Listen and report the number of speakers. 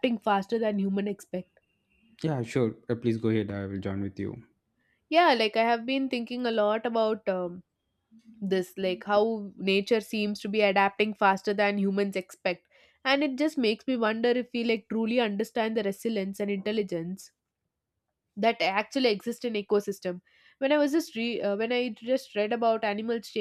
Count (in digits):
2